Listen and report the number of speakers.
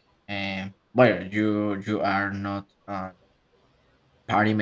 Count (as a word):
one